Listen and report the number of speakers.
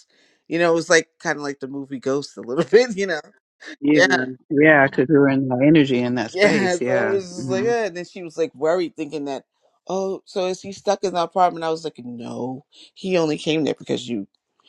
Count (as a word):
two